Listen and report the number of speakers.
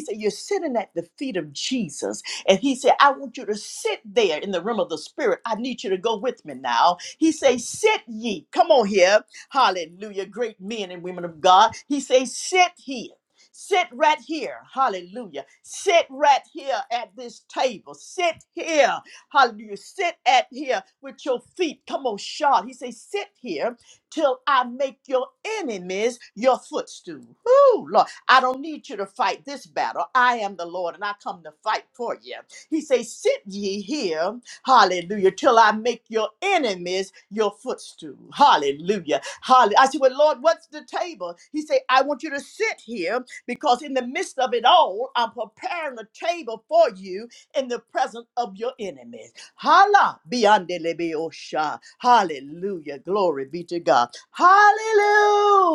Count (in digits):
1